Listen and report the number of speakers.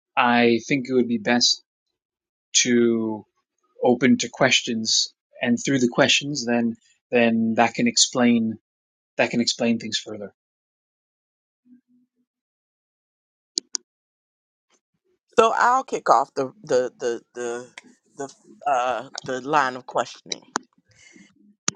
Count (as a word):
two